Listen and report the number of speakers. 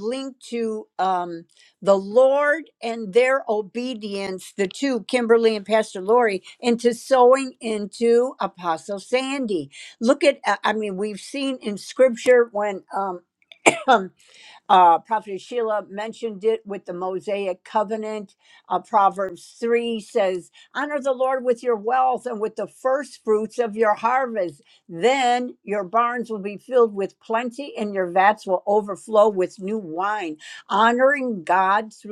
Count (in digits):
1